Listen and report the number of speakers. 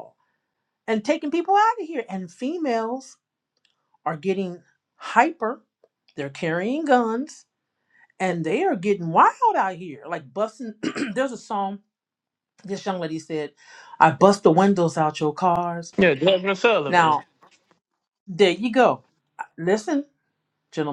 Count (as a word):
two